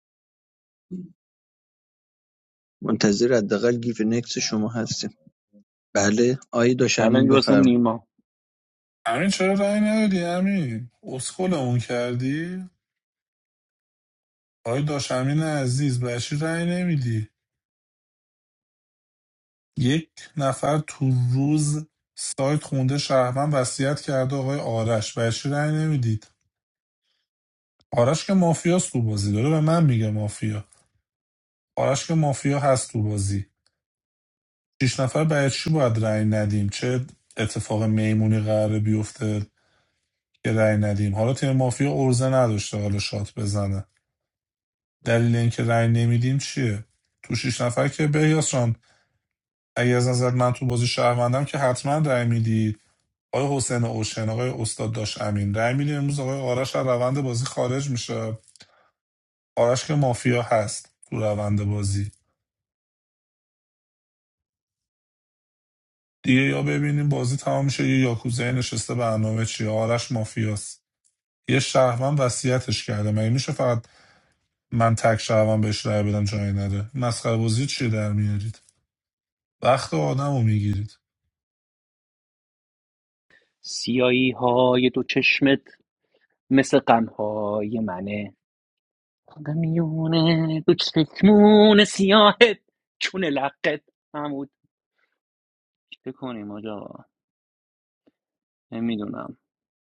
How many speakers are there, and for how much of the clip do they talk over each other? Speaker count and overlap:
3, about 1%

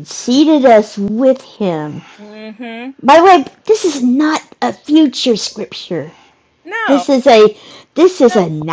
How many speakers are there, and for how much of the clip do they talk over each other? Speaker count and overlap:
2, about 2%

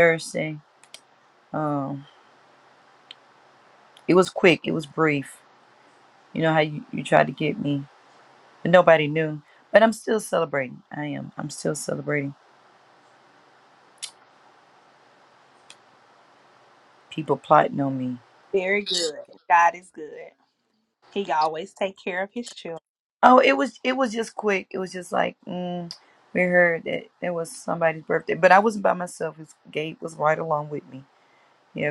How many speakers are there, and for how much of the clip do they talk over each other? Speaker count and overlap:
2, no overlap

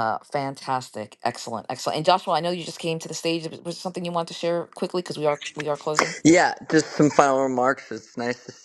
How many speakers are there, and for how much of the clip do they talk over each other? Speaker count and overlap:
2, no overlap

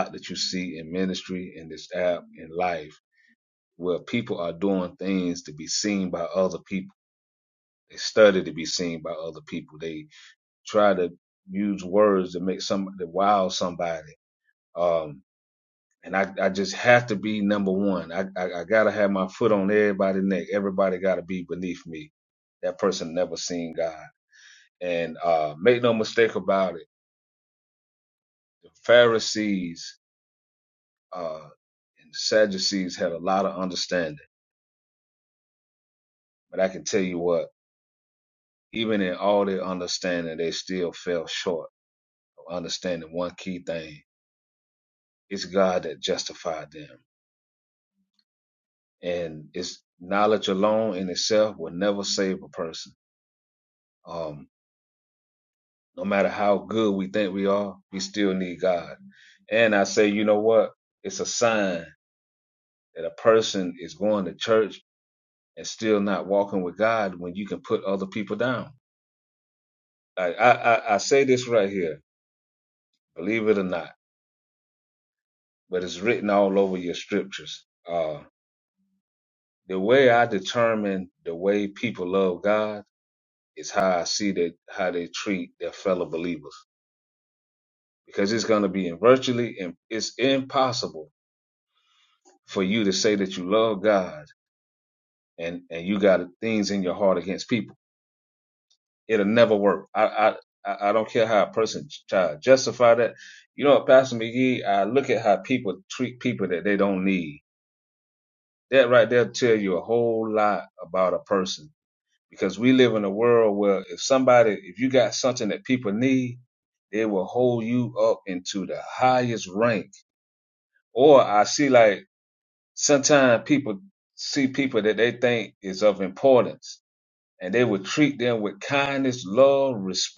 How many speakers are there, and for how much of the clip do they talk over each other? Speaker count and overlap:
1, no overlap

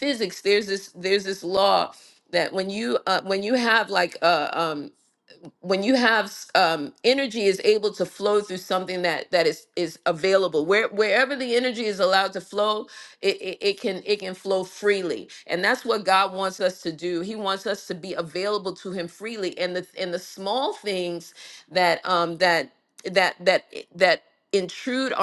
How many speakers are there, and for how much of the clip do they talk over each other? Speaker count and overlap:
1, no overlap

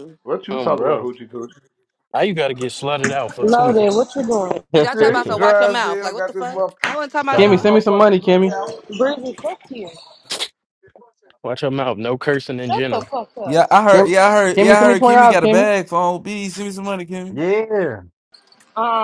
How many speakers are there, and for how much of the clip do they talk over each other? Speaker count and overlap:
6, about 32%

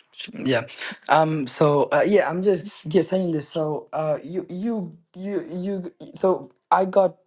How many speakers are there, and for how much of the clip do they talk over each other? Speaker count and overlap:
1, no overlap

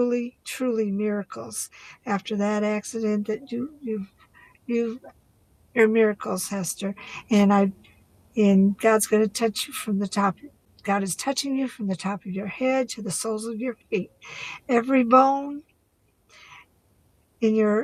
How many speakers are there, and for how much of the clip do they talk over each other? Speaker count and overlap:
1, no overlap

